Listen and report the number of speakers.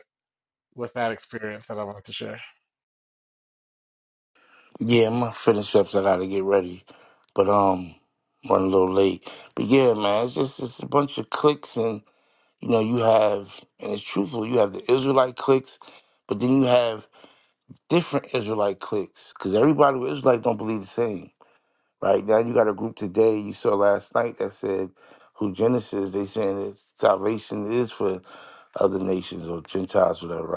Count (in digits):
2